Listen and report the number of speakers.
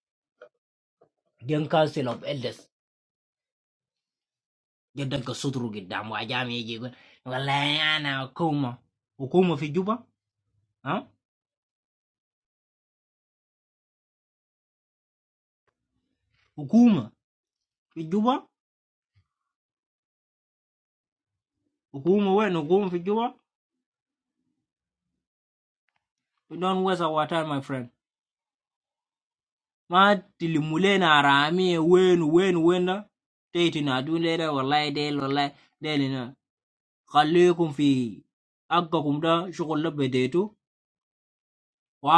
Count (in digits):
1